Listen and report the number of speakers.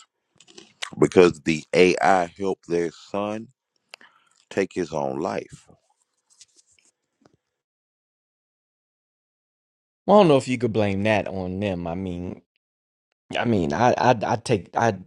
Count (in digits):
2